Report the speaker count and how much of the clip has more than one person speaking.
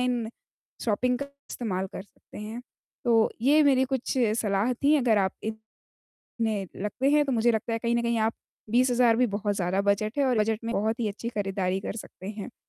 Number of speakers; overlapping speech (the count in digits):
1, no overlap